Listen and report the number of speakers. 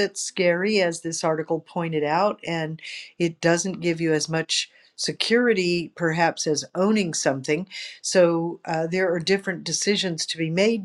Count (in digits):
1